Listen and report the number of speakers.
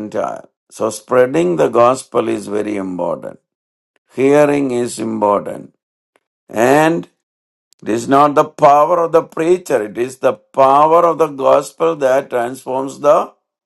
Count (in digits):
1